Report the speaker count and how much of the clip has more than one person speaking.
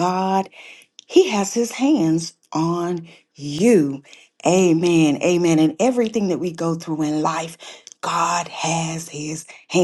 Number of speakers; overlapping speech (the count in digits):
1, no overlap